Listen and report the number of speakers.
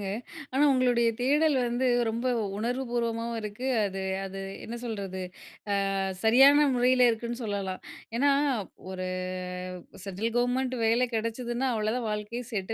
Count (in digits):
1